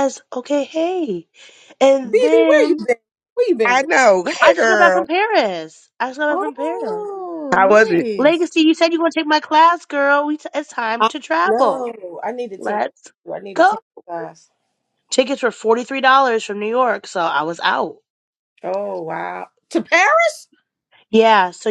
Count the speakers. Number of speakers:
3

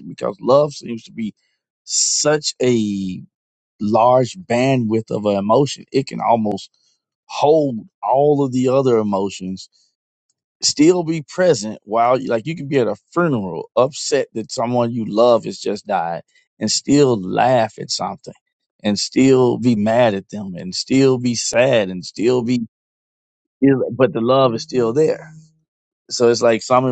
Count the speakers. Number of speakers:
1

